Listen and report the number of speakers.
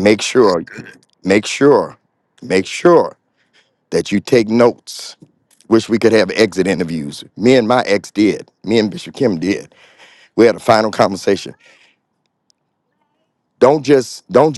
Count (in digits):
1